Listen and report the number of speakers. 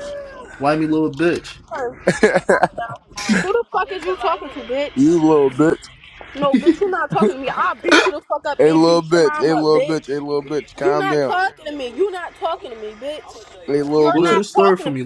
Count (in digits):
3